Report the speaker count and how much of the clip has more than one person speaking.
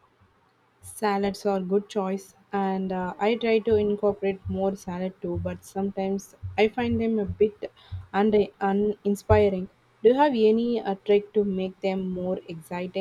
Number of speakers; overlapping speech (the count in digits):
1, no overlap